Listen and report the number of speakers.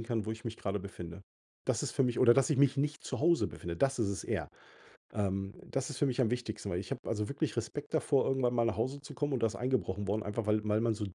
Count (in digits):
1